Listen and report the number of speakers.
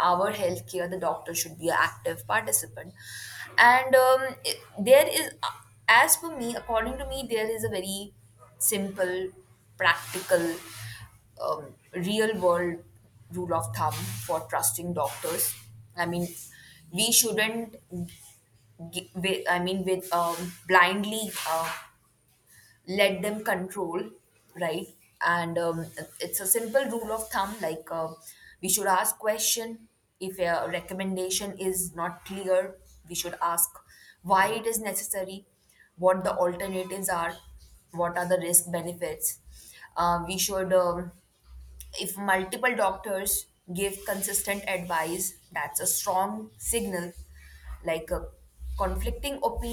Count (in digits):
1